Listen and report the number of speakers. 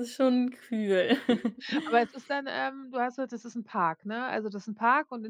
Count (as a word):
two